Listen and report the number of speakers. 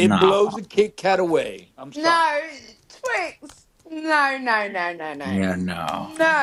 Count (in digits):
3